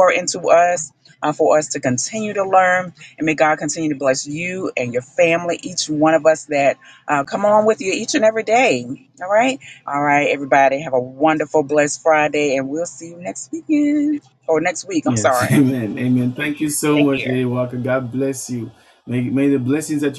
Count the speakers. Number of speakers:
two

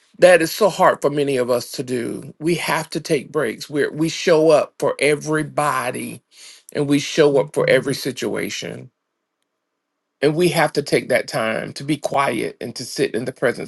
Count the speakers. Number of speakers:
one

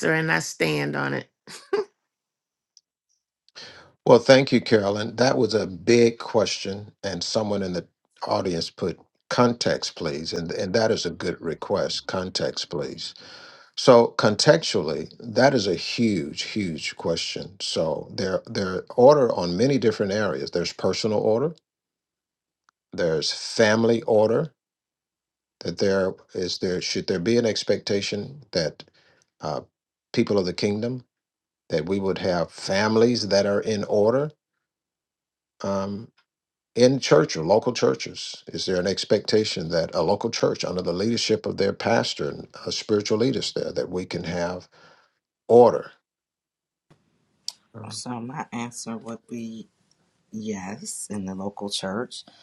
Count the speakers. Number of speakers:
three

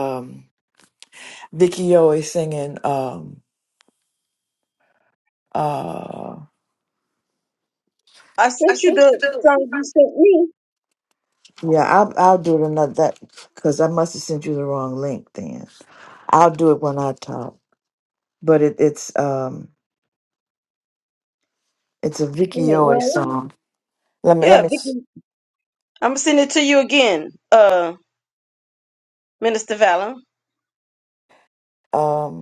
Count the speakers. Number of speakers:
two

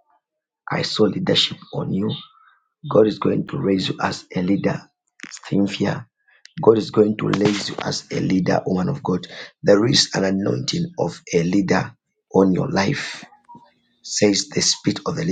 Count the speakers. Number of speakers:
one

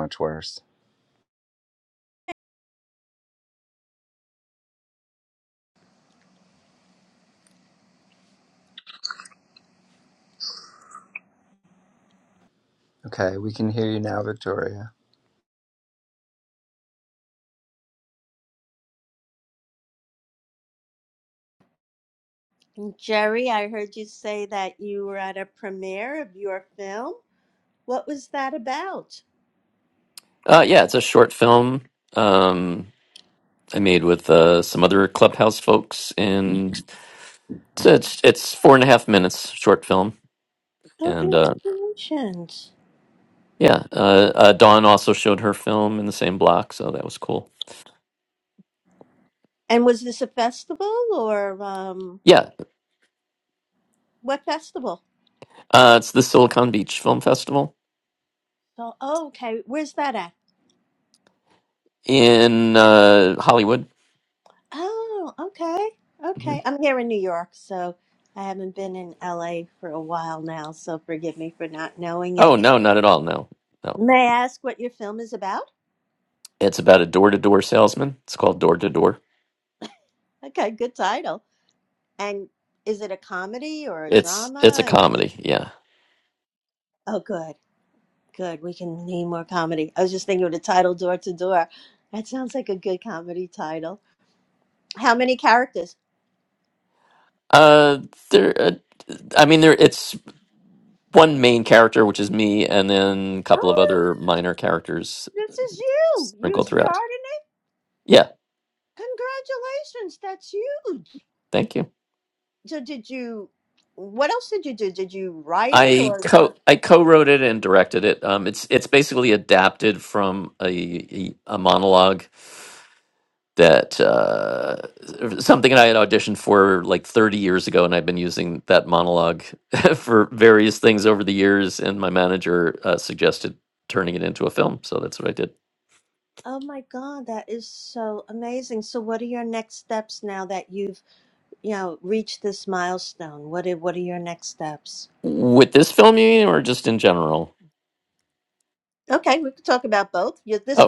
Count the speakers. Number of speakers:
three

